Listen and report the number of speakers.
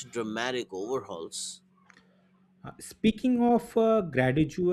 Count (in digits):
2